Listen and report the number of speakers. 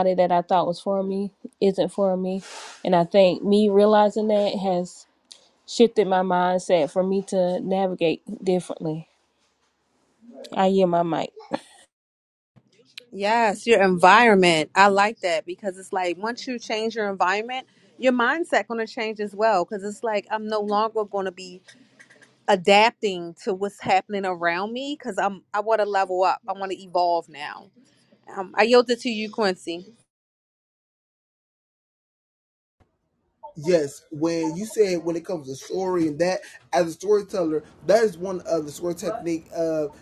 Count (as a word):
three